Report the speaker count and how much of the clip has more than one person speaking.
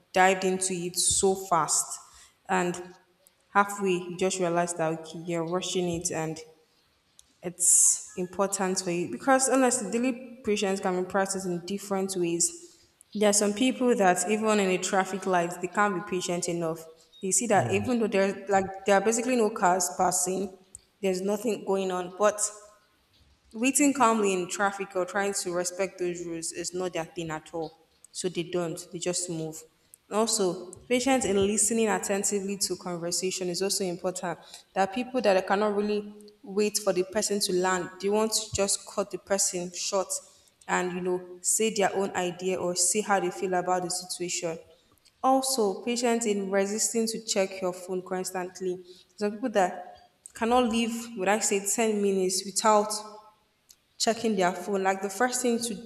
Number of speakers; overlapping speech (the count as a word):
one, no overlap